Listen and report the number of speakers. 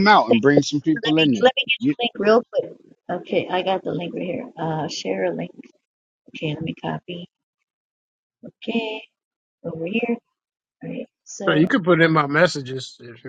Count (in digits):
3